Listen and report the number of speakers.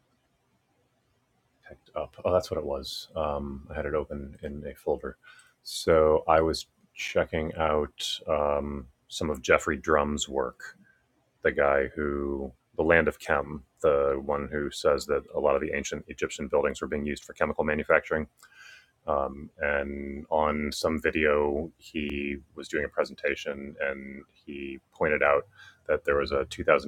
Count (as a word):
one